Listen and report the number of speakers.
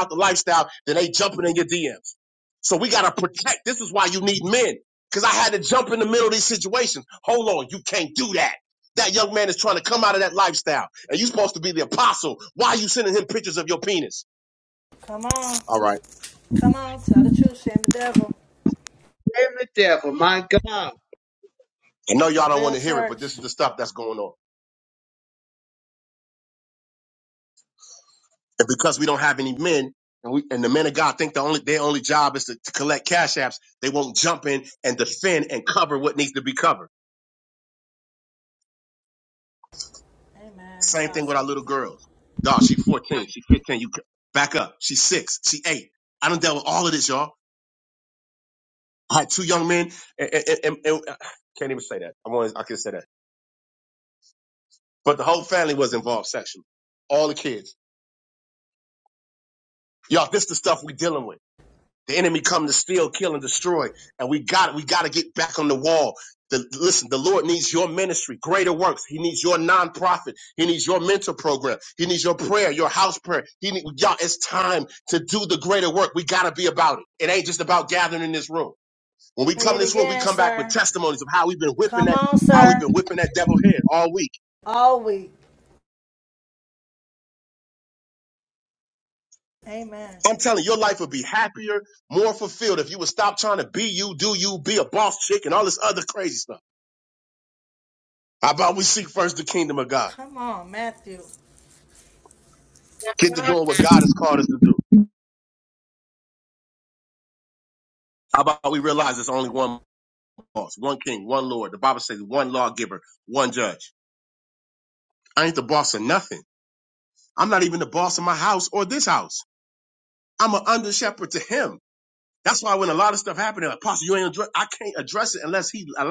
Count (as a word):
three